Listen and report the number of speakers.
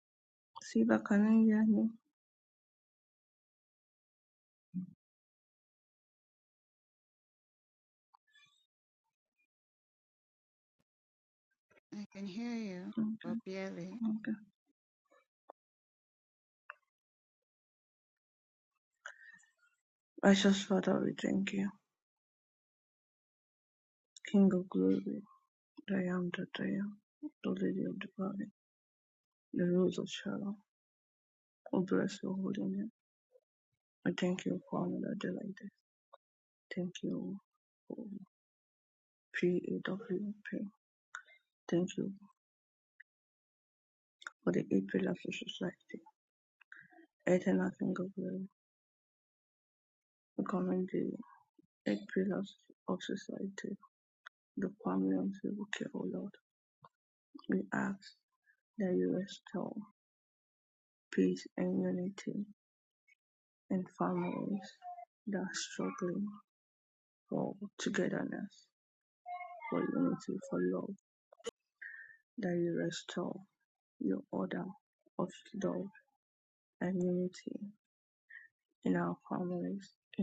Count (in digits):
2